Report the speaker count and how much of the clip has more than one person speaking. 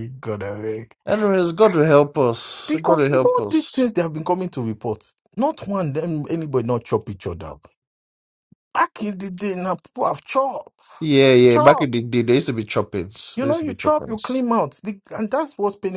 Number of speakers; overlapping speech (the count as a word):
two, about 15%